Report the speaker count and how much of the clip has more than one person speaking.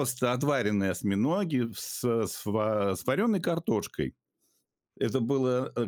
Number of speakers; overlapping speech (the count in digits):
1, no overlap